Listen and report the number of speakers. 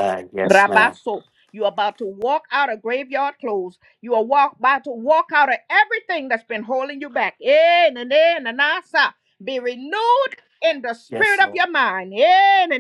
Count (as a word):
two